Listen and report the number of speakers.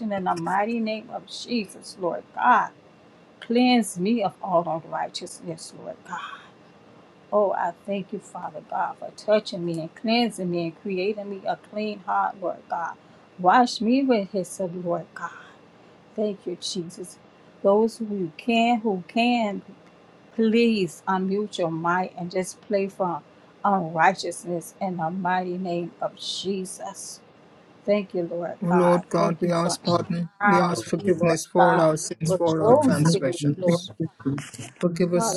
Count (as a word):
two